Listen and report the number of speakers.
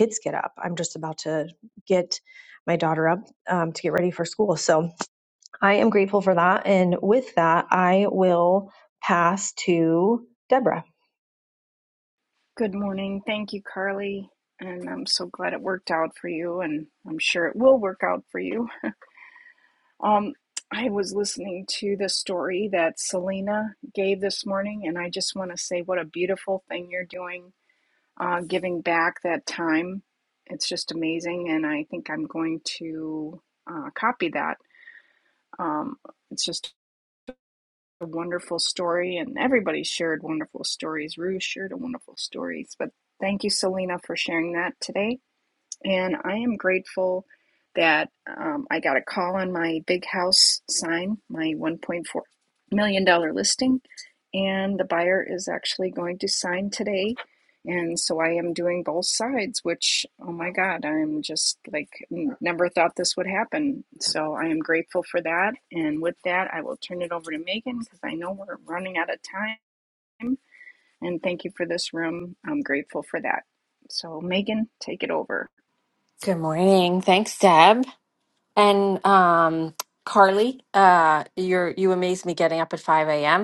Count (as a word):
three